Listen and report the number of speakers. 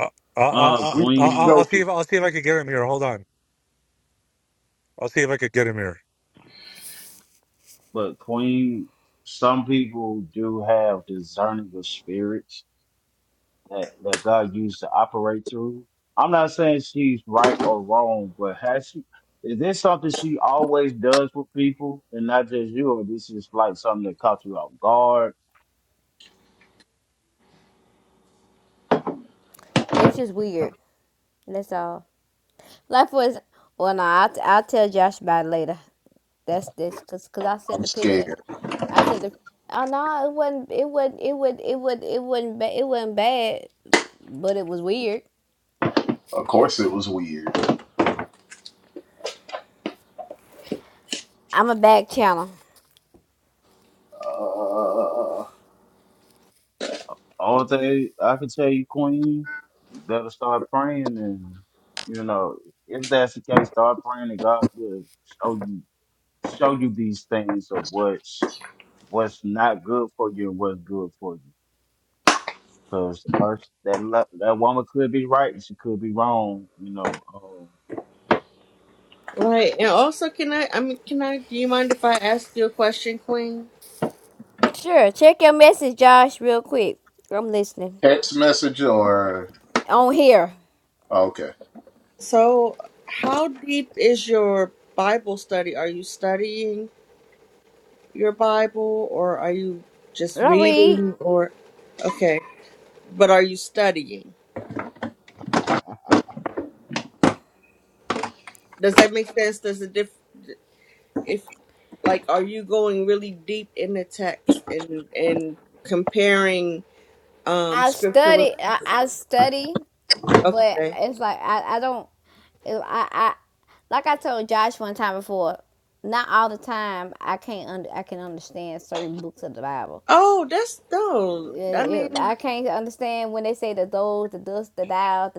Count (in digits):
5